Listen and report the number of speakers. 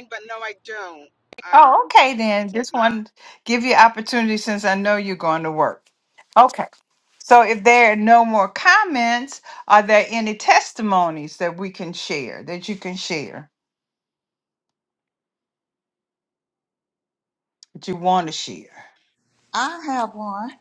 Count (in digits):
3